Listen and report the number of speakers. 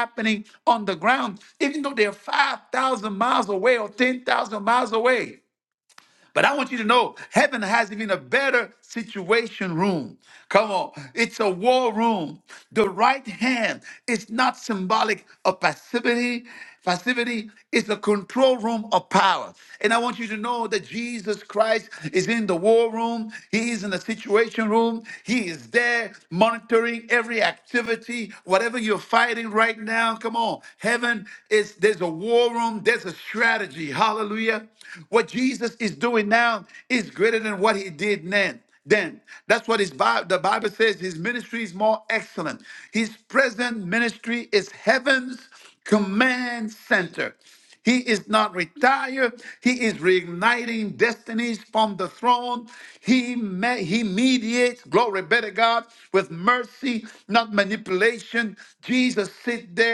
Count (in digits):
1